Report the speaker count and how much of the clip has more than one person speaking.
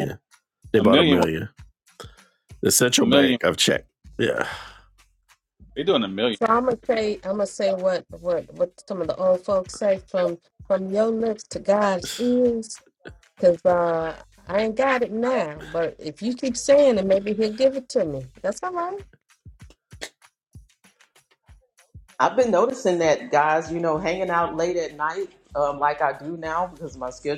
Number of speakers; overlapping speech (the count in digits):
4, about 4%